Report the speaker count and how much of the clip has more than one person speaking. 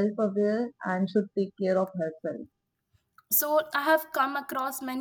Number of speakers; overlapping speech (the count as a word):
two, no overlap